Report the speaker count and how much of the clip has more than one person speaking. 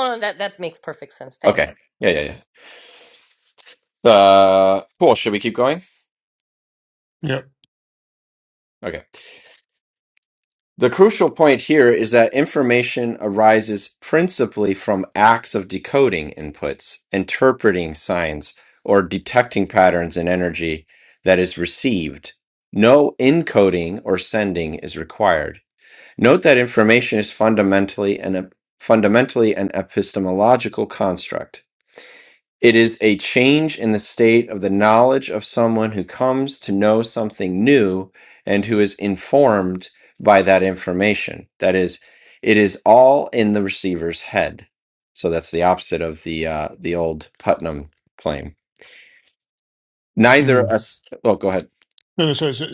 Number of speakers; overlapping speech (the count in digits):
3, about 1%